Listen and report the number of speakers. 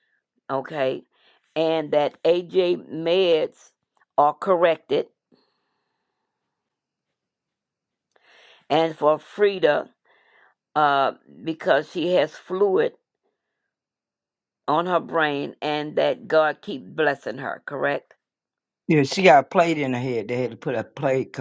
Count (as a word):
two